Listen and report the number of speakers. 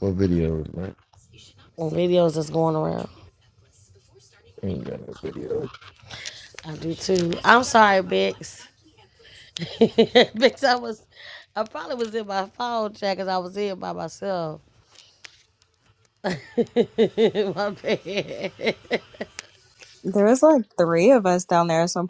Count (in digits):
3